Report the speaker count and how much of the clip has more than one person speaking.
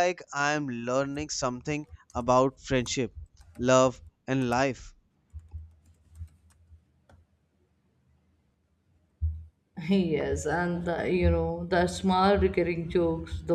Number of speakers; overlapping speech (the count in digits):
2, no overlap